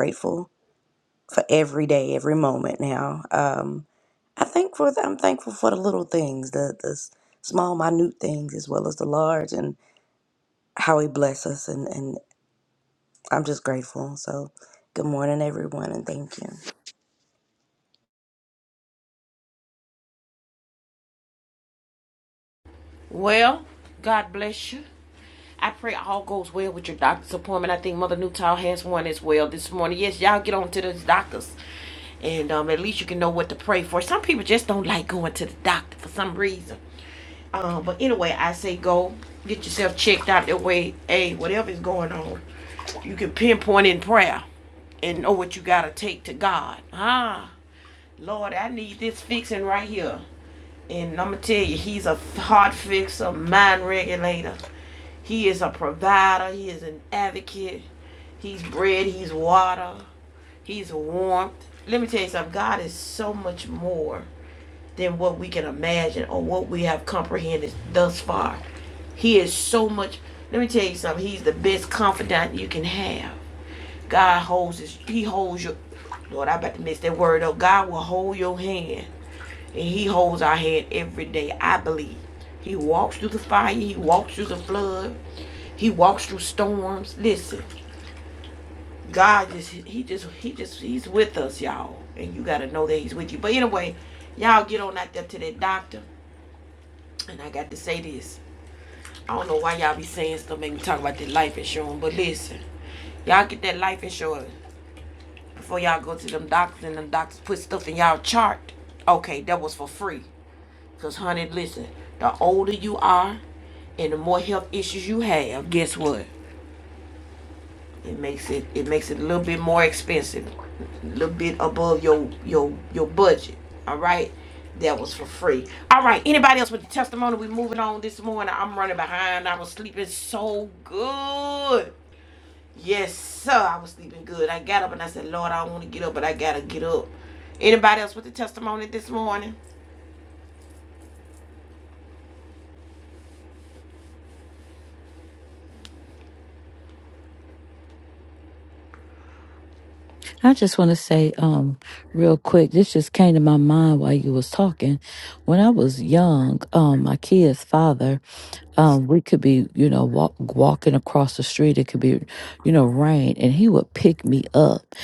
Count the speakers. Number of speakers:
three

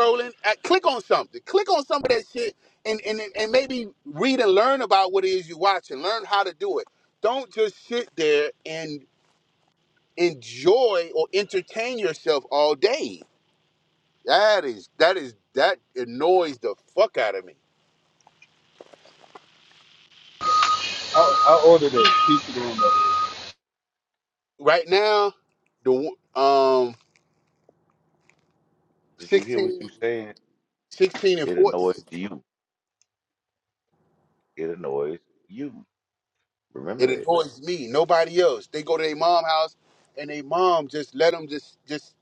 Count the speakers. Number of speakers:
three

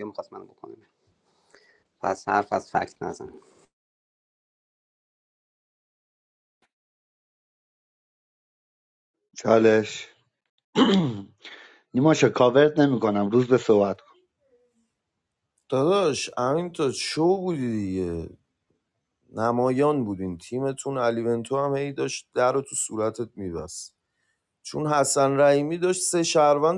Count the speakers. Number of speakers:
three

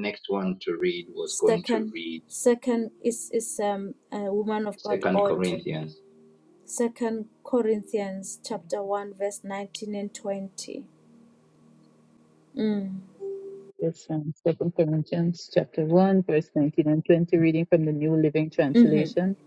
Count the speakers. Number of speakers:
three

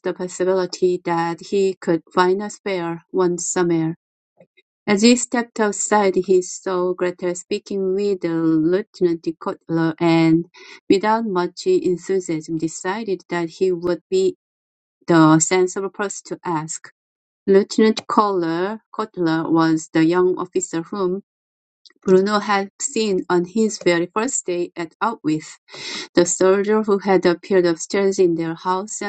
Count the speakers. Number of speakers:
one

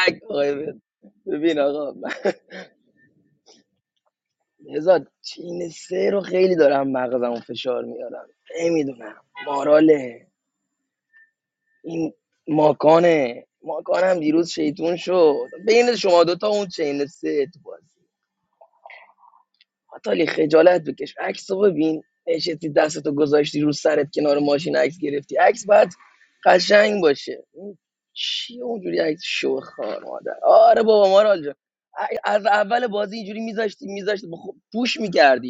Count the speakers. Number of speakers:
one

